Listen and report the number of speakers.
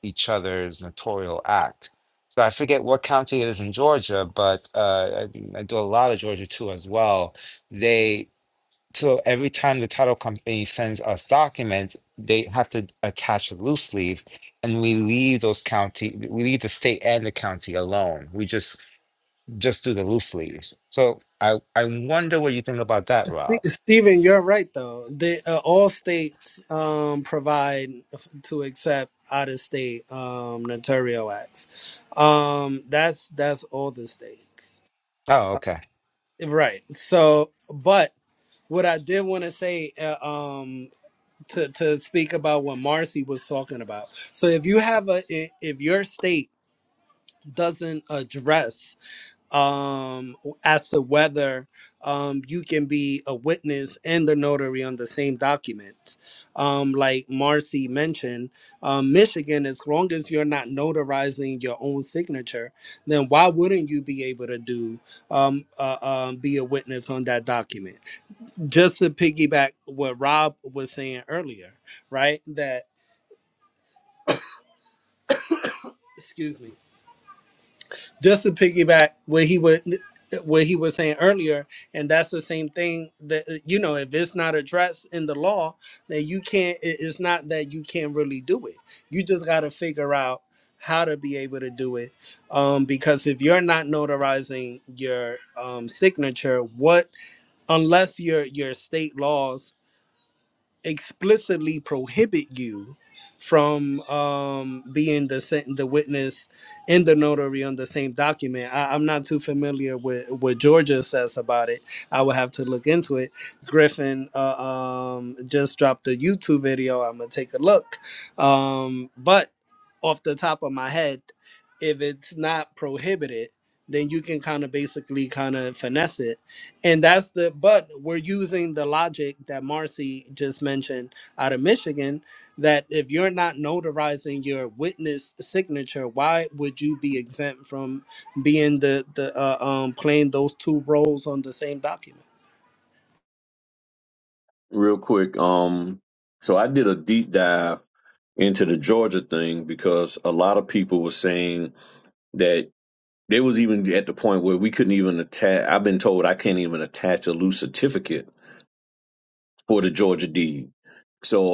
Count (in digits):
3